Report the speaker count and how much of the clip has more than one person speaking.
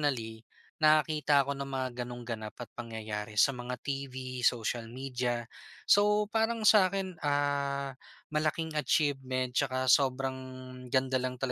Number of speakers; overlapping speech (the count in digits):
1, no overlap